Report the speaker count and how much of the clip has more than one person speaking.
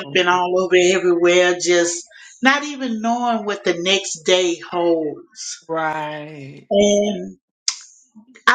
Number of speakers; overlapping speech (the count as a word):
two, about 4%